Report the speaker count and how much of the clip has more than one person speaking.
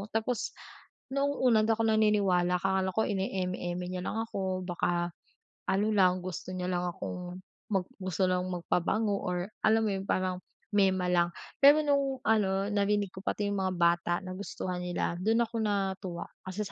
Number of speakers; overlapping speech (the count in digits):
1, no overlap